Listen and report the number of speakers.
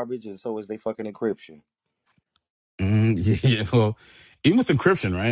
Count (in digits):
2